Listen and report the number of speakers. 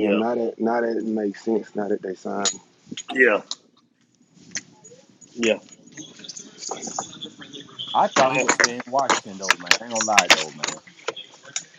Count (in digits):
3